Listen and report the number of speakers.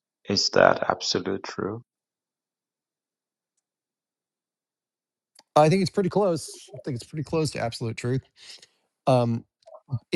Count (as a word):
two